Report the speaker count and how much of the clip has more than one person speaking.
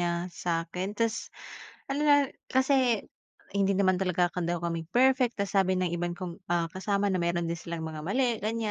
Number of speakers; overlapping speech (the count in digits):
1, no overlap